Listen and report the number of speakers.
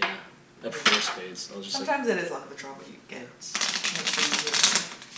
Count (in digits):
2